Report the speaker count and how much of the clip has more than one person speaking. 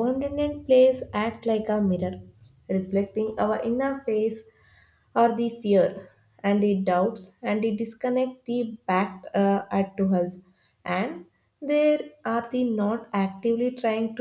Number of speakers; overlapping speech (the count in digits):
1, no overlap